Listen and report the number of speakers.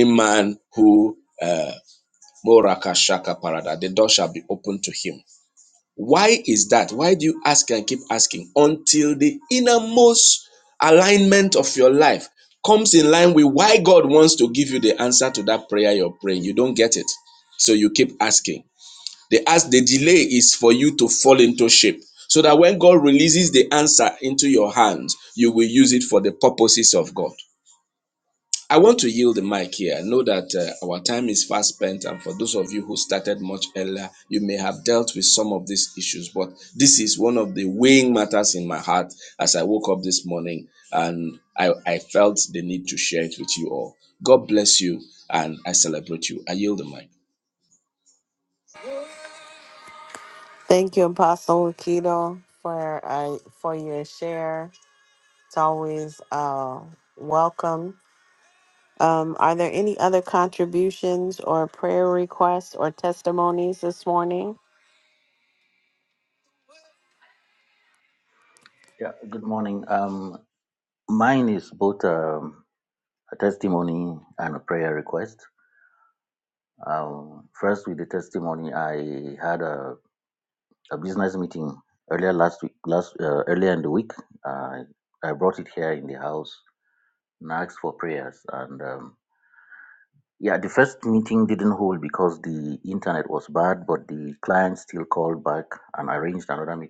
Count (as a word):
three